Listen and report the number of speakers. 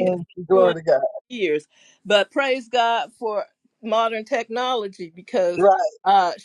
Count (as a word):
two